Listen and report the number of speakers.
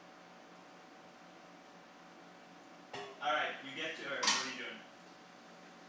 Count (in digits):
1